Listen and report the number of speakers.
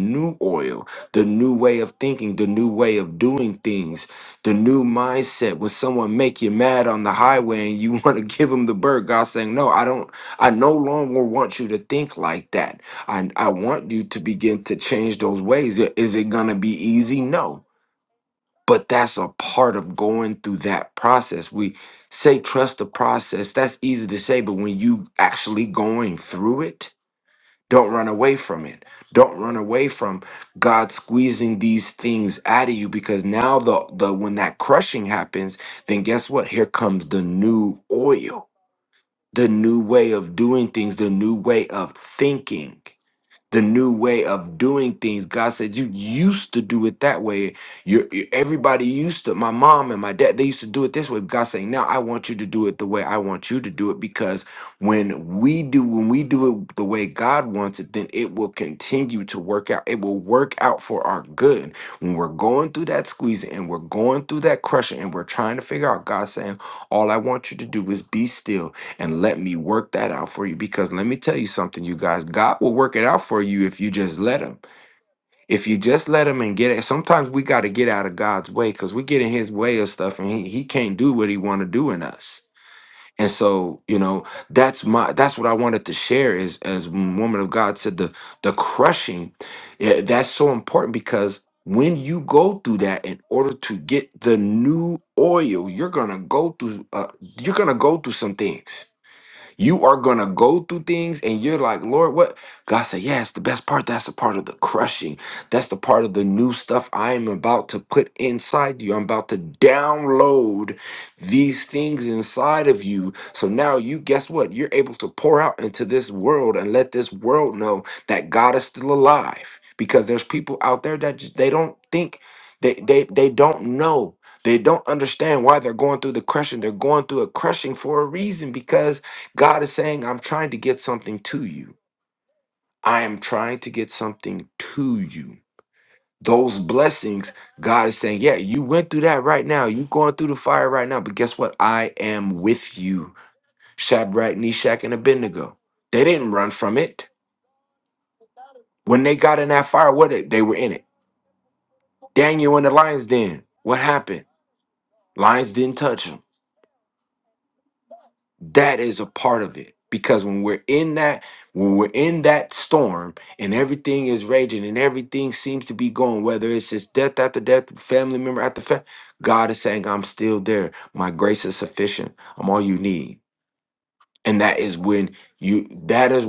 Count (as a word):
one